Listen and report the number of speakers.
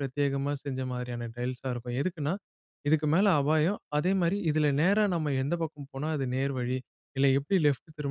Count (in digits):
1